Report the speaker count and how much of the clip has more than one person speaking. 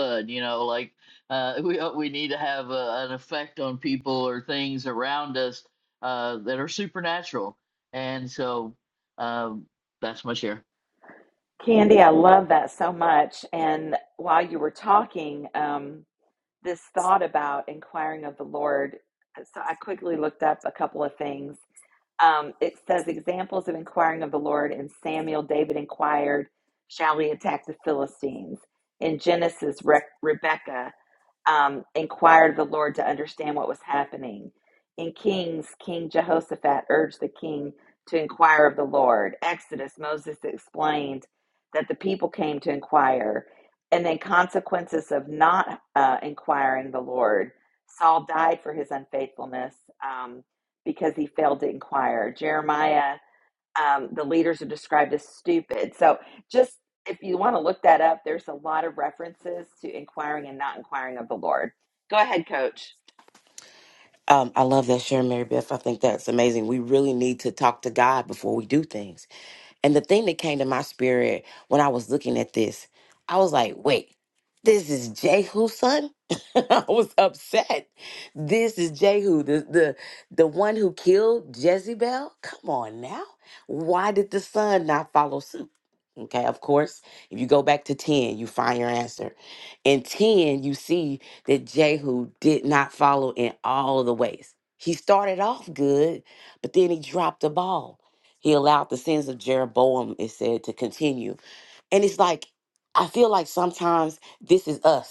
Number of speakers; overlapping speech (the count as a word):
three, no overlap